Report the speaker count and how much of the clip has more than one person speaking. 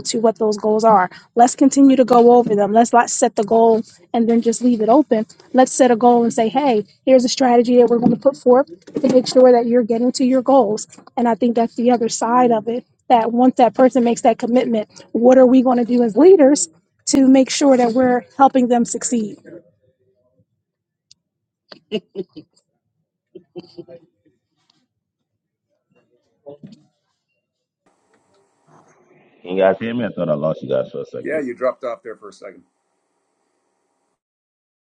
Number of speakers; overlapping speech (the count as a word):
three, about 1%